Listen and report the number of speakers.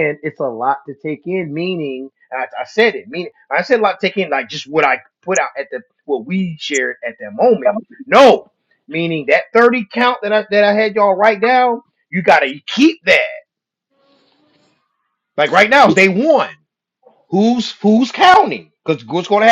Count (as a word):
one